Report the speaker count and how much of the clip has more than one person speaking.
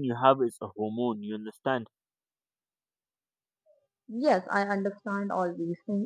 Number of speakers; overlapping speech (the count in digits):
2, no overlap